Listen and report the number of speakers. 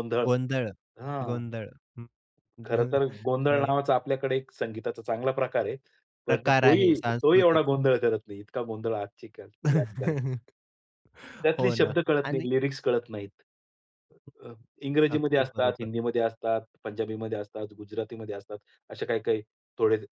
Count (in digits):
2